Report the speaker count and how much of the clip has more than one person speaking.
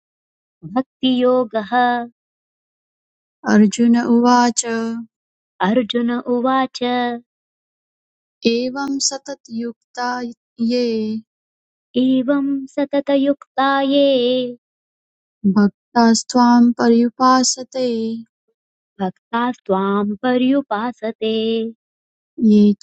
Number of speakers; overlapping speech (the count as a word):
two, no overlap